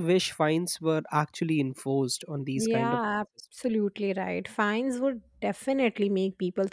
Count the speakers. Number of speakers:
two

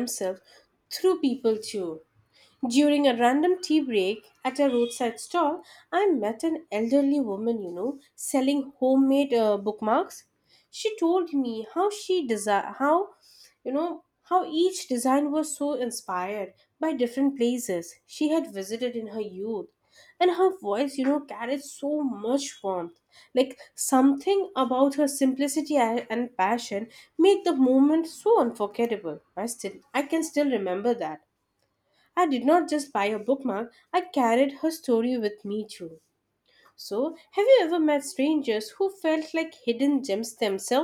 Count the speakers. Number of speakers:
one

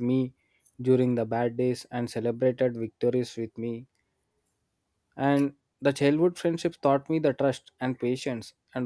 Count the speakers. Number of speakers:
one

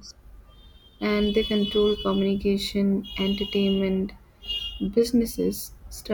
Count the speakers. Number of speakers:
one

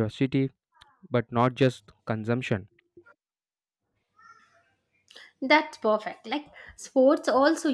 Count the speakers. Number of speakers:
two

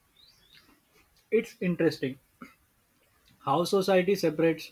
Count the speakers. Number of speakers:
one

